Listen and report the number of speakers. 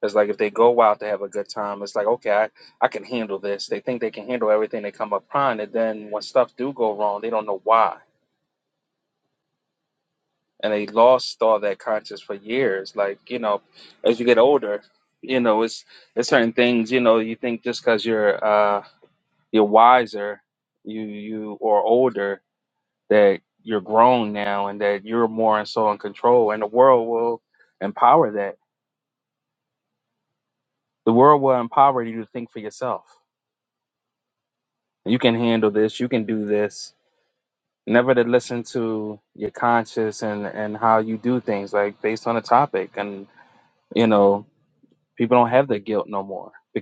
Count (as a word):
one